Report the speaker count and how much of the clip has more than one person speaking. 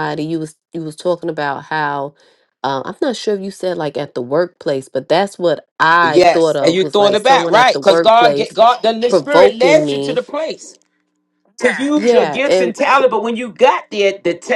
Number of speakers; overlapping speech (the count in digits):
2, about 31%